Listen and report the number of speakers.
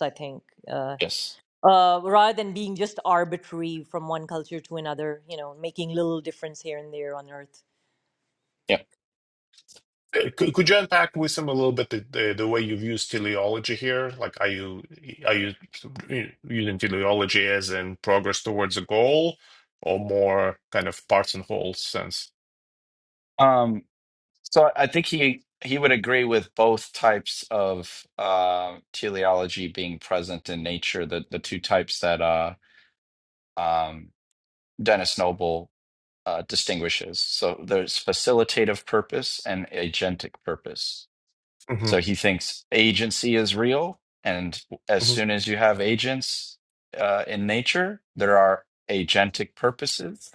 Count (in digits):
3